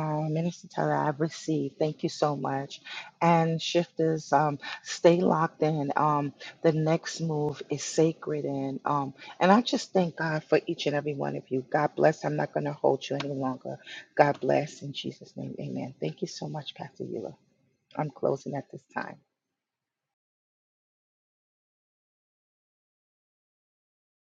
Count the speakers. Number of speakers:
1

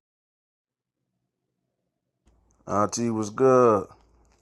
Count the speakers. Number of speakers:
1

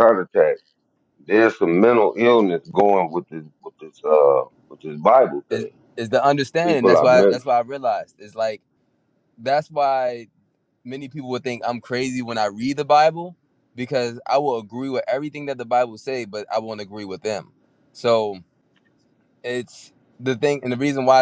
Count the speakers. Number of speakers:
2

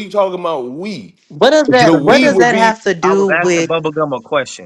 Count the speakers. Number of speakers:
3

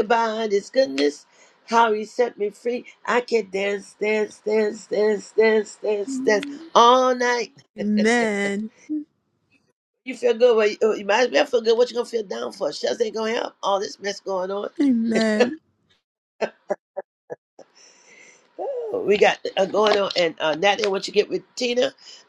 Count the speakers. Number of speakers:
2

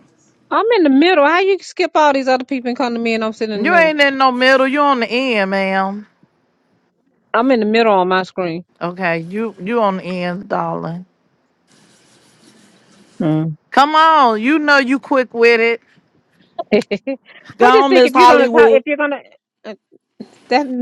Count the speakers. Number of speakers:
2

